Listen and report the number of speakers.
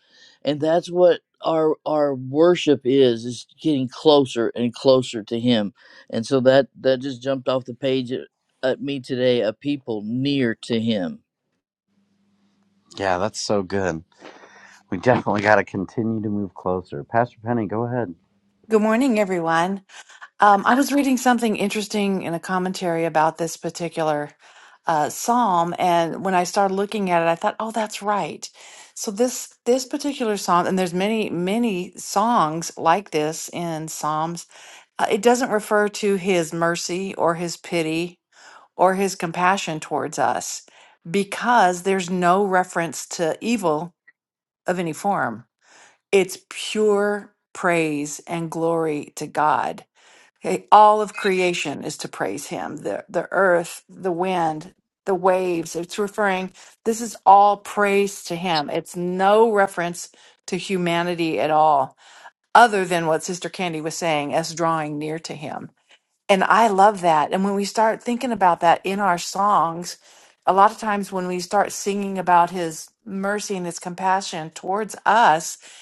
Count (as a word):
three